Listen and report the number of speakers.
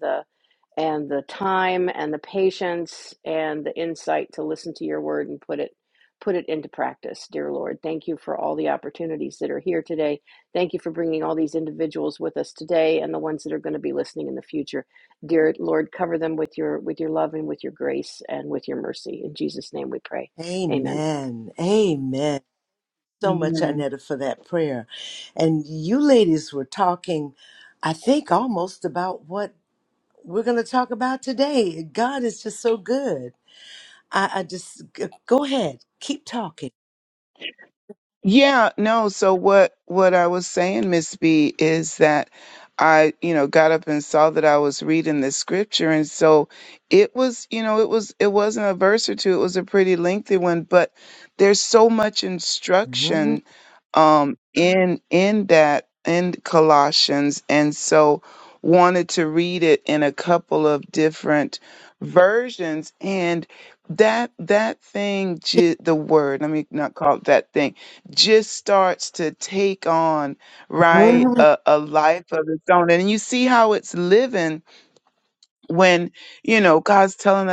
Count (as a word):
three